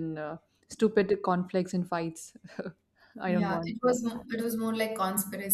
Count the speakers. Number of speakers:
2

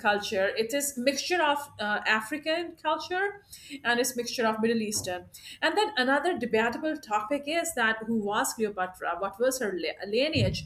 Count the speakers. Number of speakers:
1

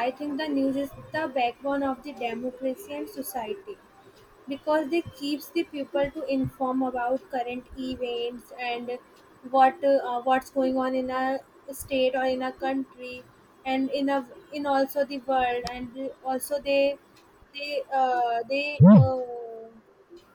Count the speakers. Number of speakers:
1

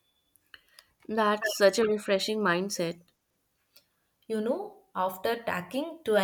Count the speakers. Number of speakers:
2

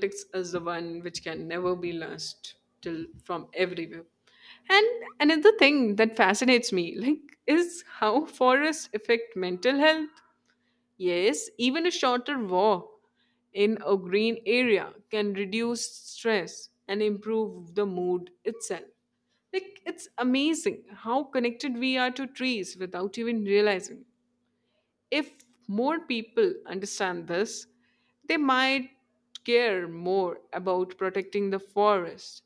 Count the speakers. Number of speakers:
1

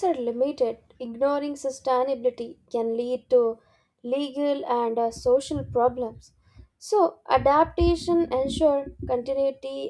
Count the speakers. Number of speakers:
1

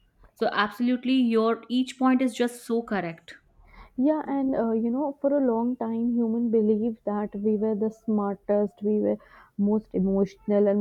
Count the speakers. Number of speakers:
2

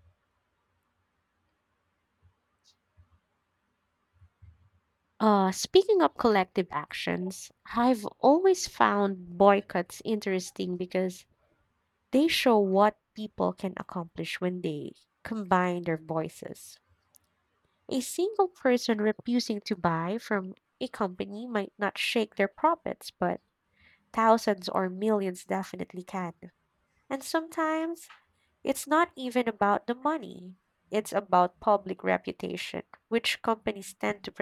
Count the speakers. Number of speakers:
1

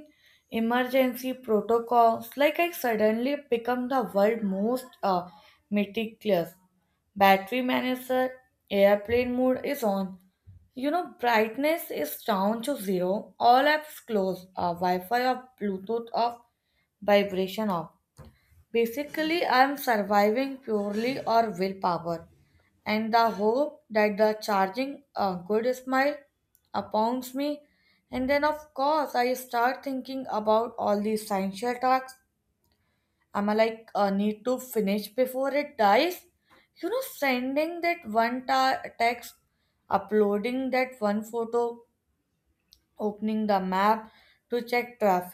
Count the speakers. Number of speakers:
1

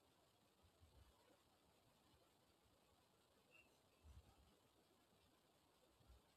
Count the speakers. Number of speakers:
0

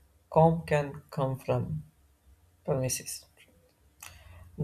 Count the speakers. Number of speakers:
1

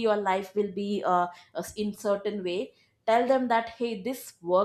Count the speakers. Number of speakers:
1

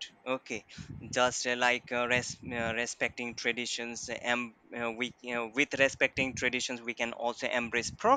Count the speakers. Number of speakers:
1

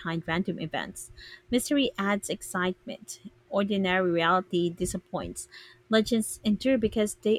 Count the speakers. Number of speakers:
1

